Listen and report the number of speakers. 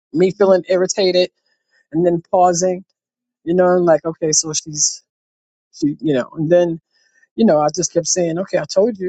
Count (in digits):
1